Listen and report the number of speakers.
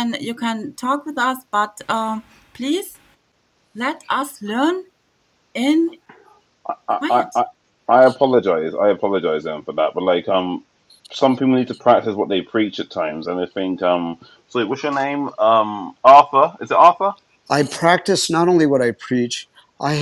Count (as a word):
three